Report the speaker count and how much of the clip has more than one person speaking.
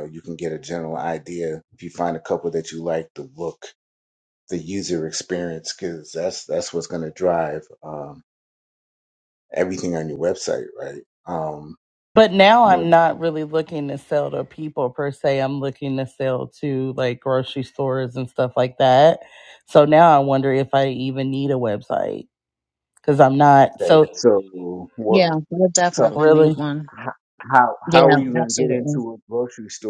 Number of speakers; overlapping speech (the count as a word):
three, about 9%